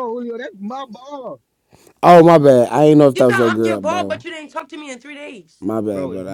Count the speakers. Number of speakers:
three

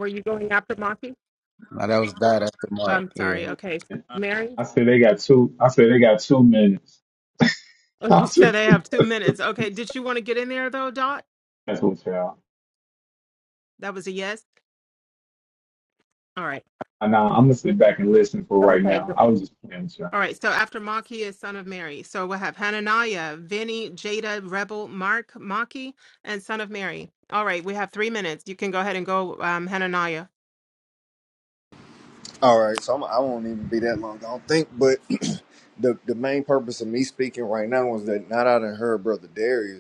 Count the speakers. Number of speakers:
four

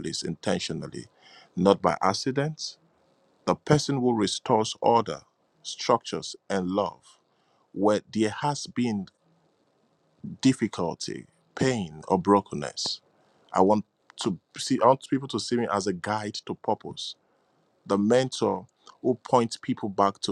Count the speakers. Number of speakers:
one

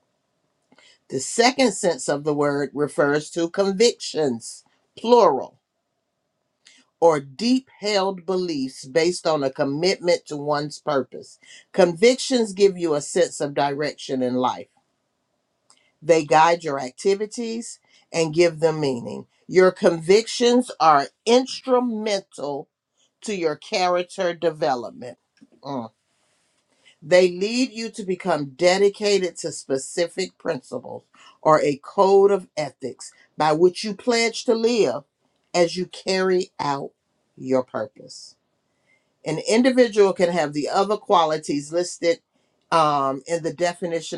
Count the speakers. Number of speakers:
one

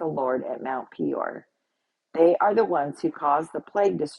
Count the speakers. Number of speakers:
one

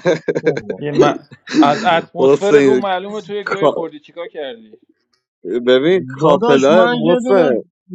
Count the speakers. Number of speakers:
three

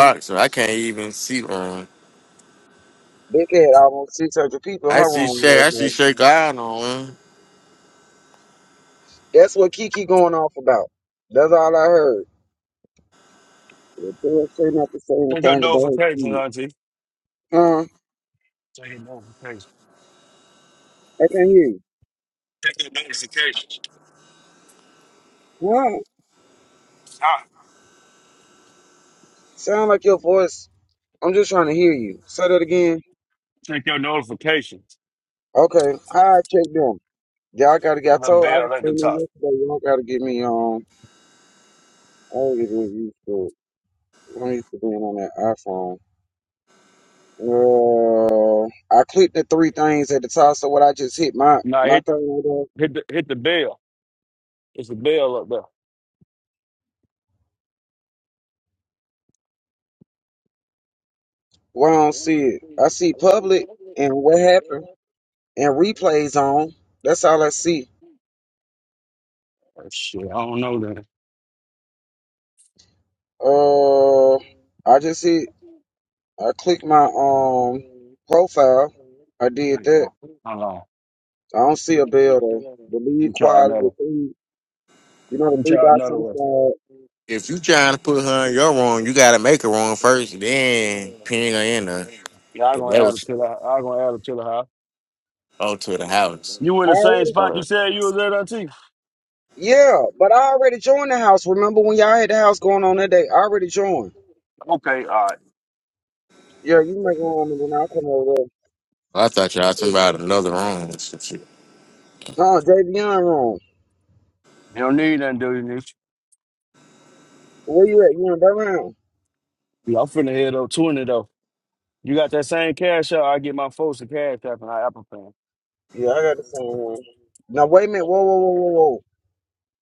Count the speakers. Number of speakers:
three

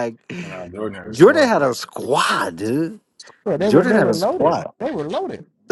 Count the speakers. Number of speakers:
three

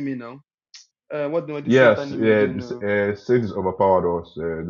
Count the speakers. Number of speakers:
two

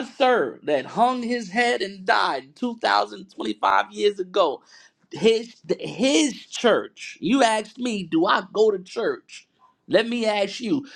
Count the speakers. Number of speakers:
one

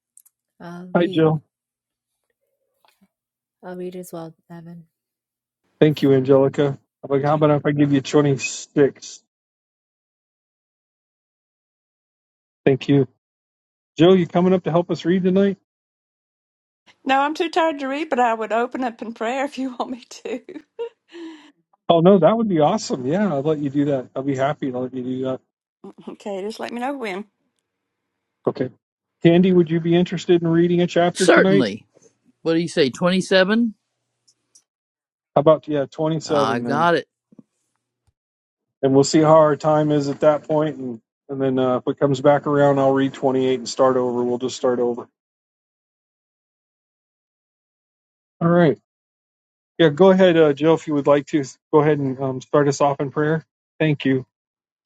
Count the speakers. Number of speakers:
four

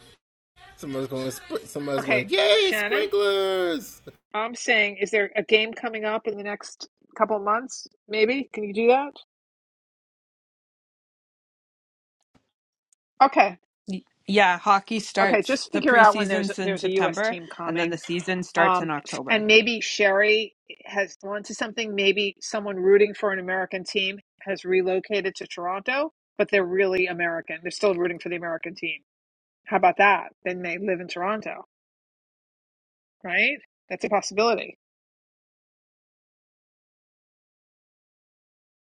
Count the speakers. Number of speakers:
three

